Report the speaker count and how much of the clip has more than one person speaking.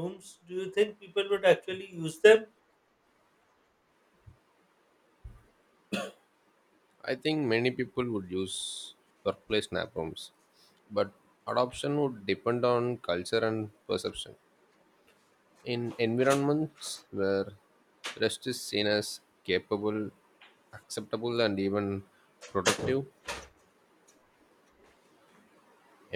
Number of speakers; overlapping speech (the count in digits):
2, no overlap